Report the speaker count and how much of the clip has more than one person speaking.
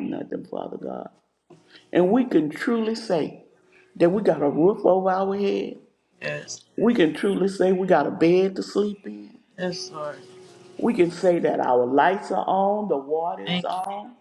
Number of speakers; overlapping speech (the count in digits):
2, about 1%